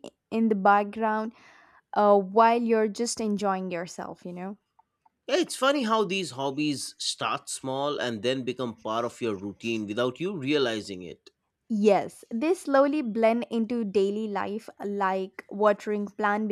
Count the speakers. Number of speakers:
2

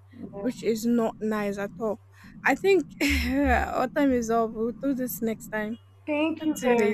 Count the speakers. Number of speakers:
2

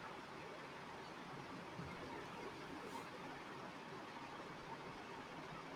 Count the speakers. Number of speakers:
0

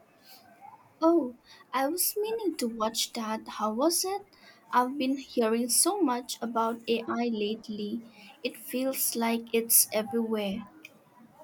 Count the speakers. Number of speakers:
1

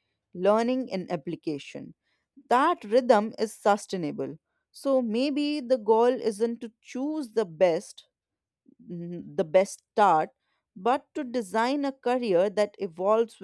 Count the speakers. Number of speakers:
1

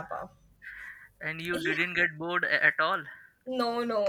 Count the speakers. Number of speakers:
2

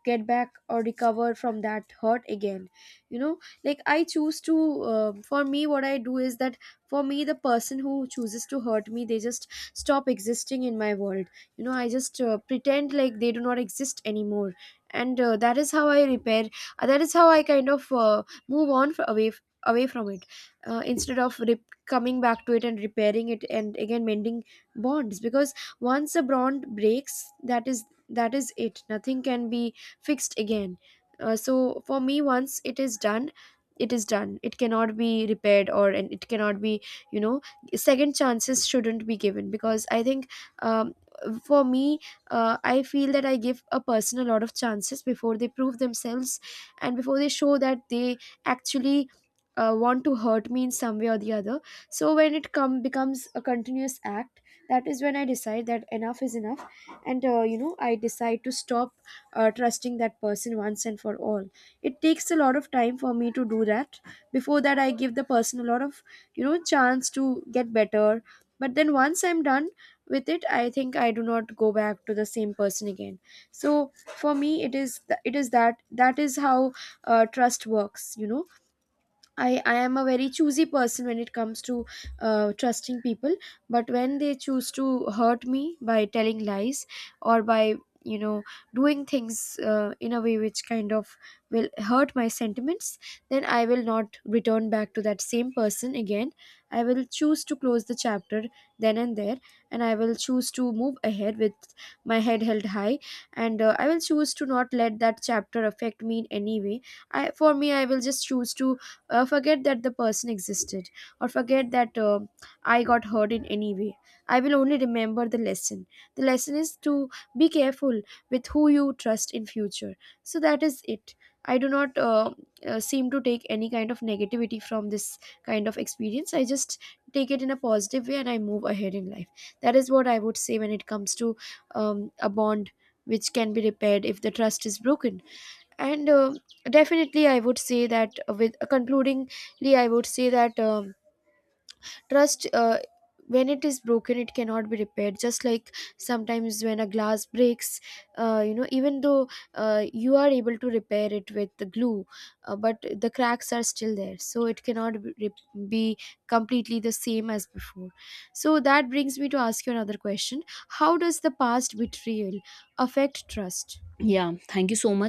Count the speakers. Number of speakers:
2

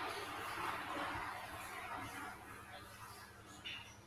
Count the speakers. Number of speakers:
0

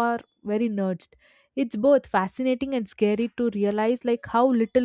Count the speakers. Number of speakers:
1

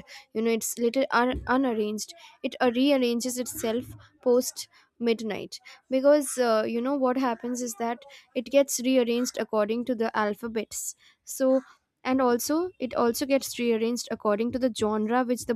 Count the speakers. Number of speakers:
1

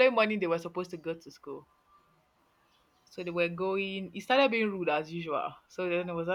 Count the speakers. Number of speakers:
1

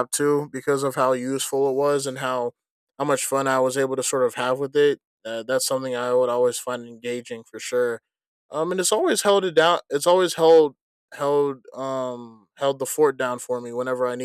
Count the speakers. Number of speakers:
1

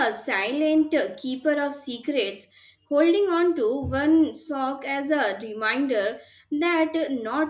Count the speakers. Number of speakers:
1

